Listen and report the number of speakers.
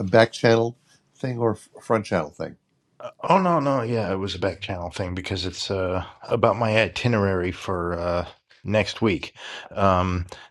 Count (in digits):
2